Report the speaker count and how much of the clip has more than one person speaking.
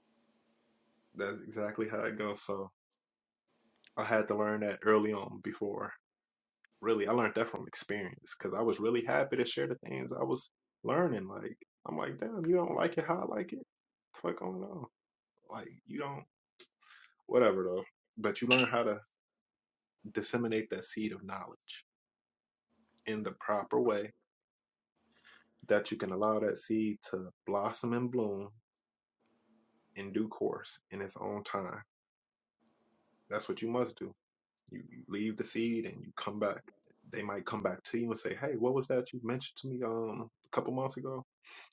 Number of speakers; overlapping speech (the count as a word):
one, no overlap